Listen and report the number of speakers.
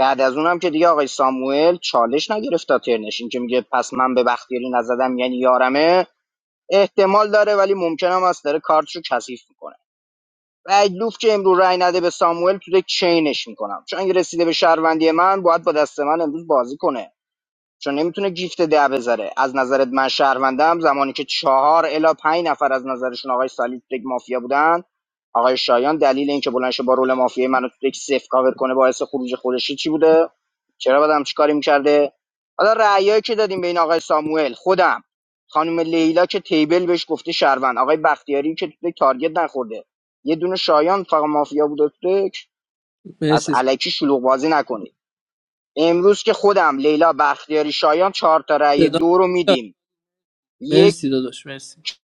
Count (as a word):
two